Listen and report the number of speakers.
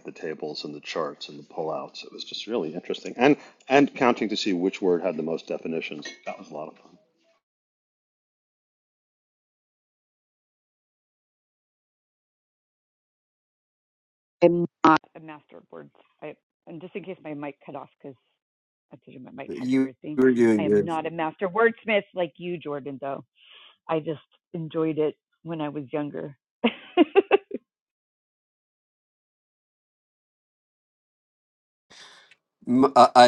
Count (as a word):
three